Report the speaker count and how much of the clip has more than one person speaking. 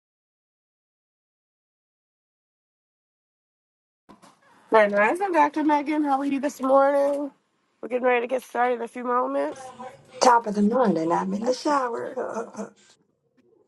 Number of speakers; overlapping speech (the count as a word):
two, about 2%